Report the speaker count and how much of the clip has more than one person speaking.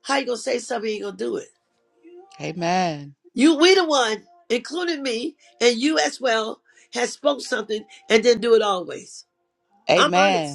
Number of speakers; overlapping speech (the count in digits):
2, about 4%